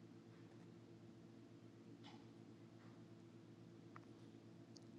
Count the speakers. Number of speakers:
0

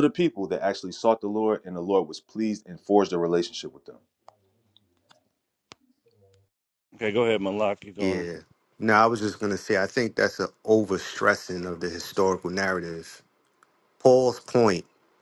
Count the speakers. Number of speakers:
3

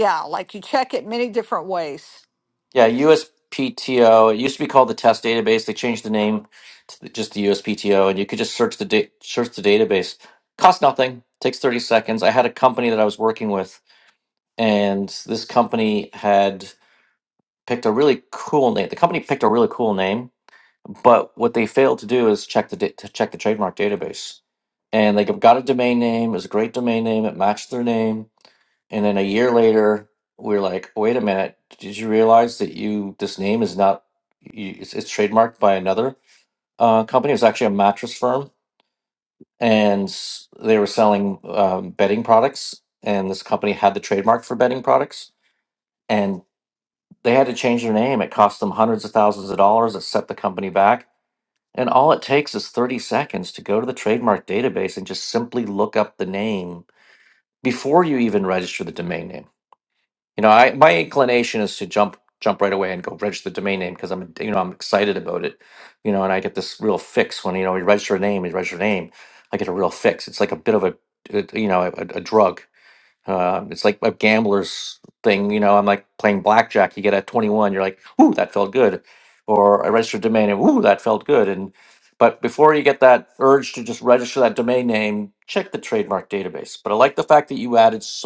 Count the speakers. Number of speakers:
2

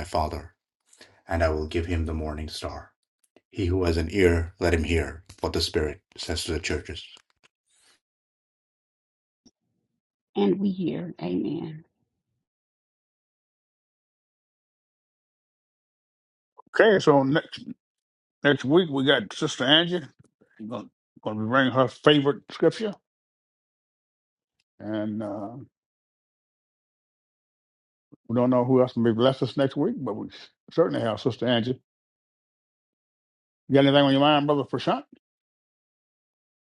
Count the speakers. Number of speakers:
3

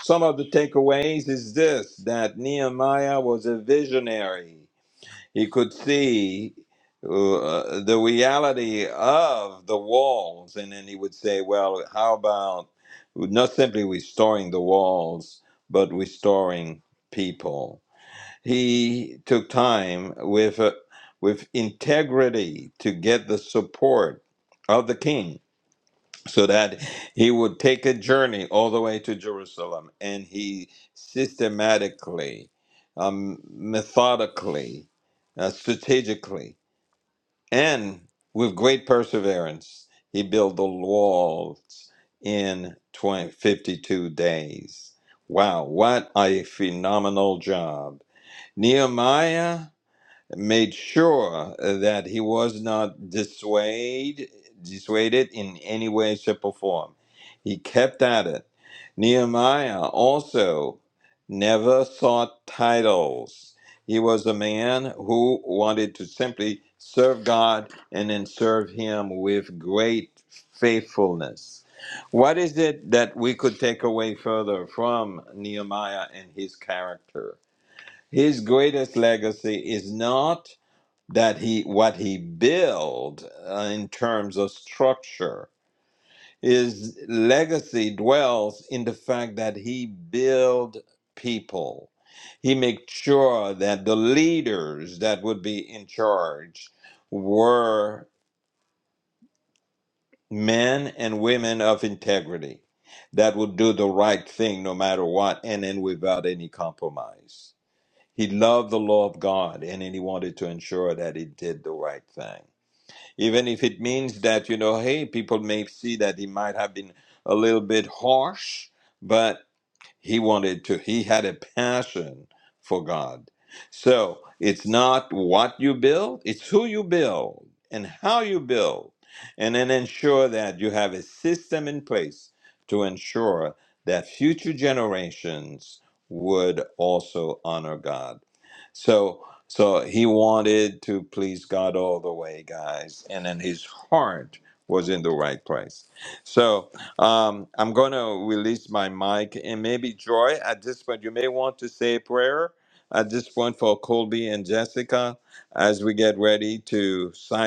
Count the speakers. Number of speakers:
1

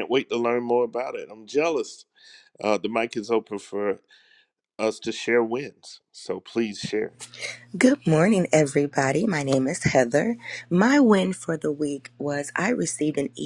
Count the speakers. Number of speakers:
2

